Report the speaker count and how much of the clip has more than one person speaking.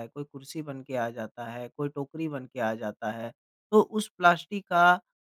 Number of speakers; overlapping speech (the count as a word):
one, no overlap